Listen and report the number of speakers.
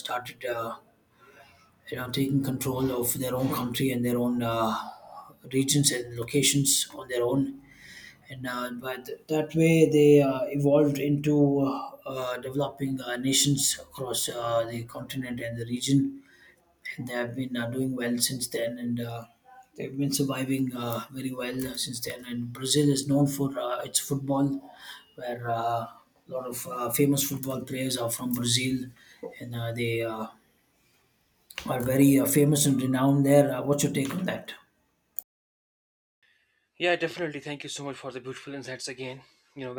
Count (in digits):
2